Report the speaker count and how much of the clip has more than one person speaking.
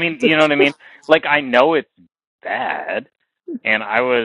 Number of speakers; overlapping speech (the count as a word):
one, no overlap